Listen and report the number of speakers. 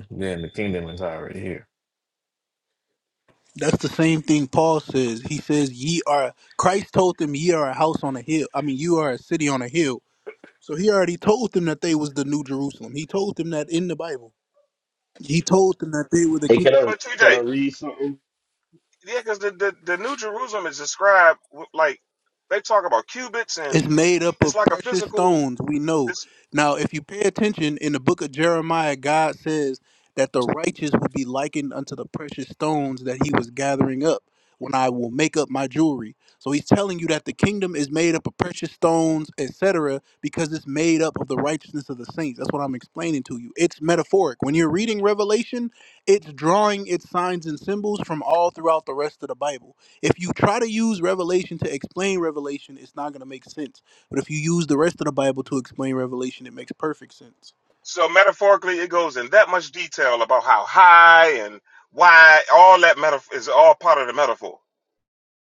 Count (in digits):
4